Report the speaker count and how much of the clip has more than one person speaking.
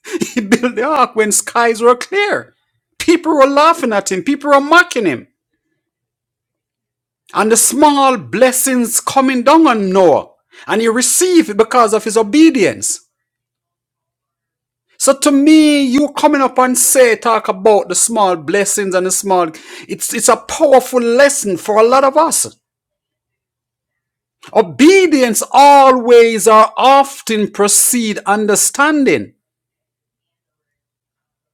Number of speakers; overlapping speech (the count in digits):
1, no overlap